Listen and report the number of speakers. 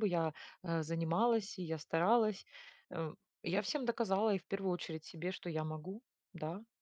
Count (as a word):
one